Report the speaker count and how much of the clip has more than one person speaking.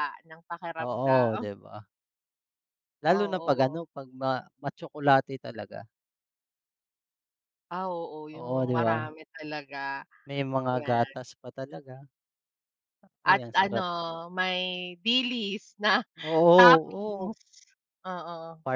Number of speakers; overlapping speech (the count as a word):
two, about 20%